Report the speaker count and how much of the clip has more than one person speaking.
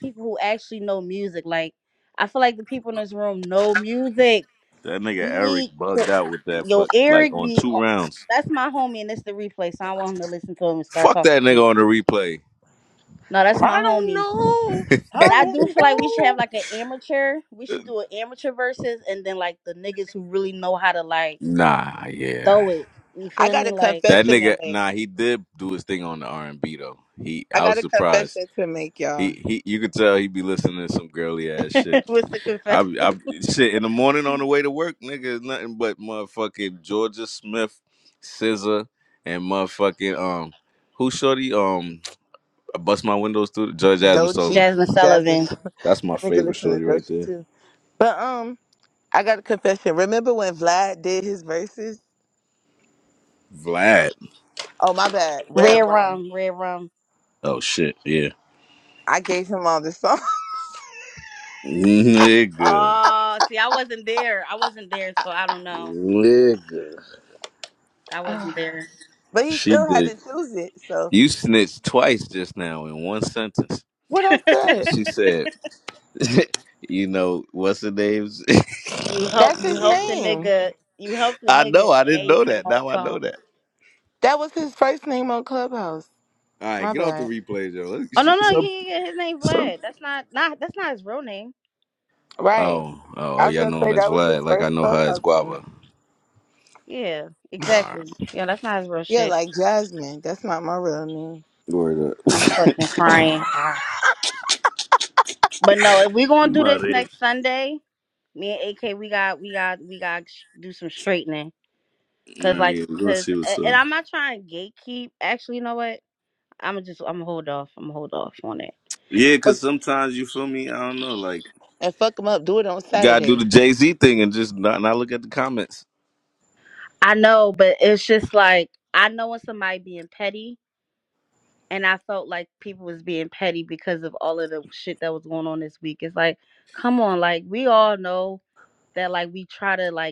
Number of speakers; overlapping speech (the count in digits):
3, about 15%